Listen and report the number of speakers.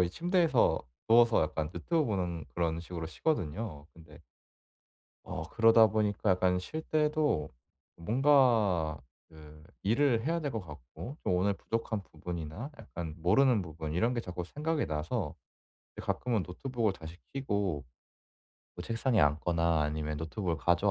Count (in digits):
1